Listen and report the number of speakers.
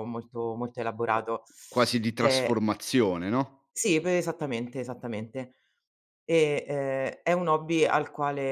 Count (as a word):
two